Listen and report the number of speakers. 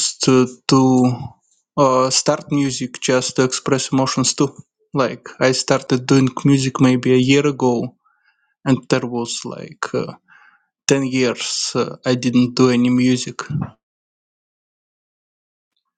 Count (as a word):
one